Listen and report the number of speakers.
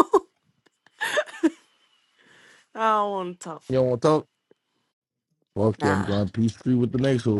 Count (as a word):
two